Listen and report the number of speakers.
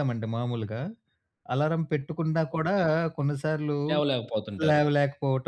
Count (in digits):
2